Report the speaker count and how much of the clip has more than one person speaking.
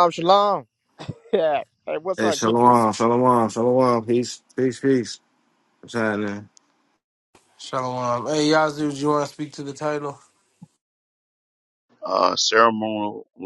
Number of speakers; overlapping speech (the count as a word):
four, about 3%